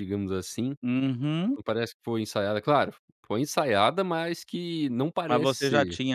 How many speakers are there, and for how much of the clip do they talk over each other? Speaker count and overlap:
two, about 11%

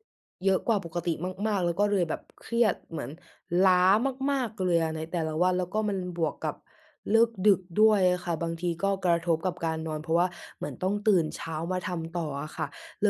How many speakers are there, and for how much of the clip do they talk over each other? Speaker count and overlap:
one, no overlap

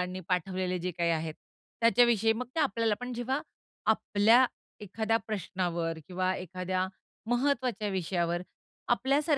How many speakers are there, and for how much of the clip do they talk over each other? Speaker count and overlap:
one, no overlap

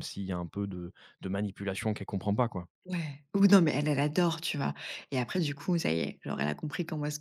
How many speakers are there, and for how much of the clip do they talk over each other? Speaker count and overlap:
two, no overlap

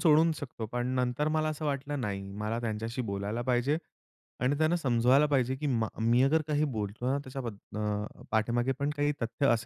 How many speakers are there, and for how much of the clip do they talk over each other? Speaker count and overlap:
one, no overlap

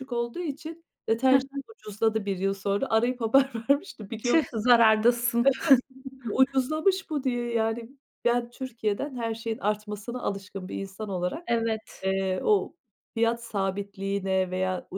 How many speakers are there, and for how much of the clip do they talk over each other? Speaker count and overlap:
two, about 3%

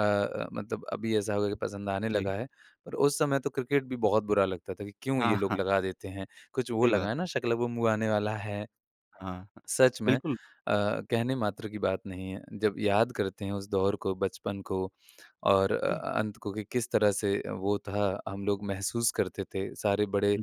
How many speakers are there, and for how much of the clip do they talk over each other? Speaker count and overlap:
two, about 6%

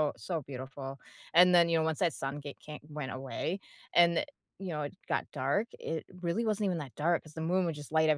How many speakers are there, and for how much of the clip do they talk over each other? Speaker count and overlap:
one, no overlap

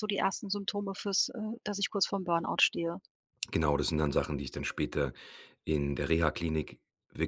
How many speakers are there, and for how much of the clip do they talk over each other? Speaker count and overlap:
two, no overlap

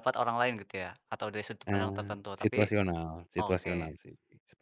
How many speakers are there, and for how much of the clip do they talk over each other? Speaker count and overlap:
two, about 29%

